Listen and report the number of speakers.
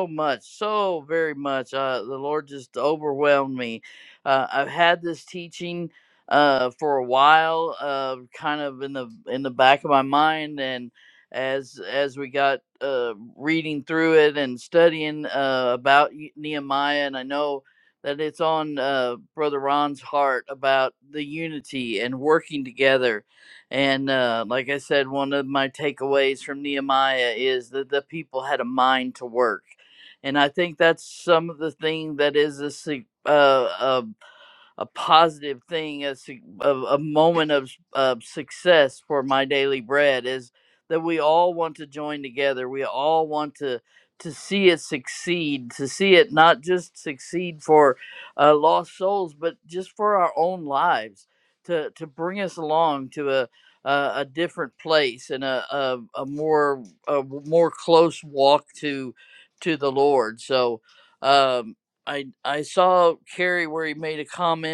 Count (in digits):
1